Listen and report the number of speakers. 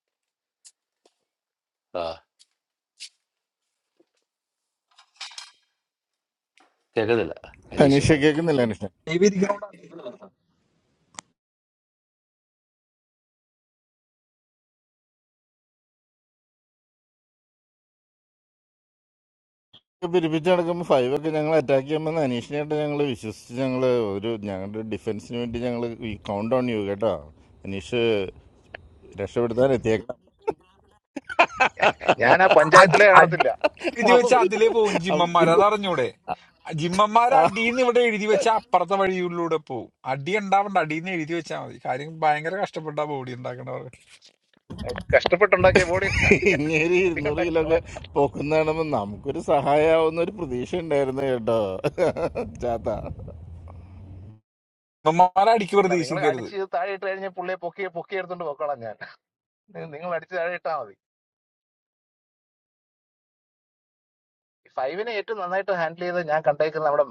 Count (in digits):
4